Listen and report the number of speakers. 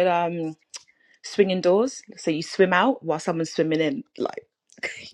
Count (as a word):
one